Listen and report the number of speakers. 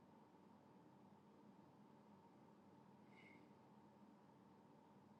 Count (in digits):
0